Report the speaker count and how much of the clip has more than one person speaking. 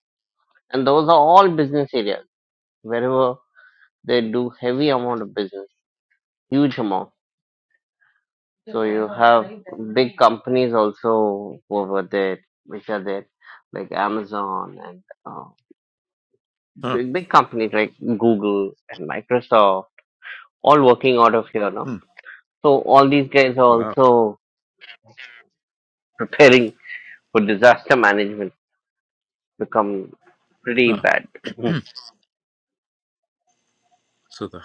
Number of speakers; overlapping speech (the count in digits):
2, about 2%